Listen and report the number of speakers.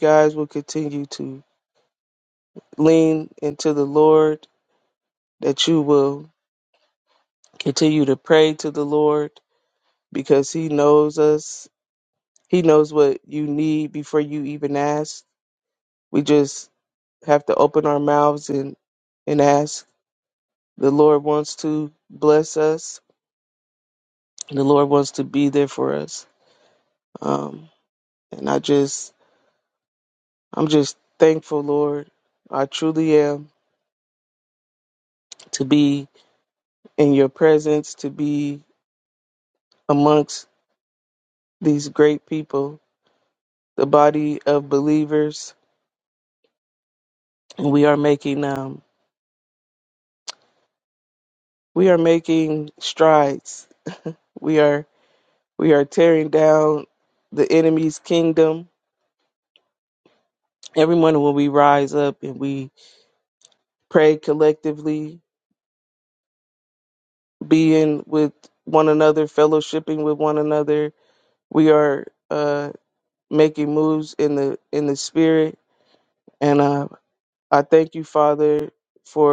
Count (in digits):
1